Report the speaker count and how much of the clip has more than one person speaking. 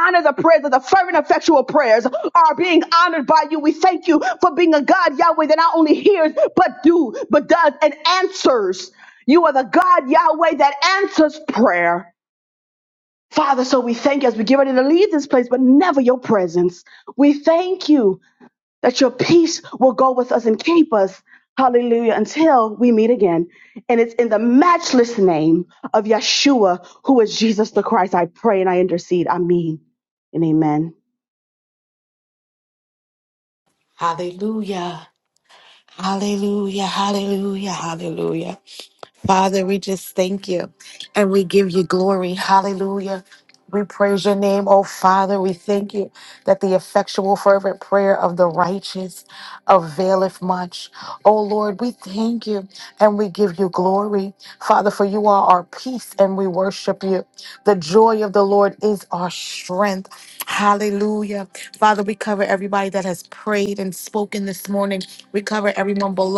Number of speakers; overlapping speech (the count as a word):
two, no overlap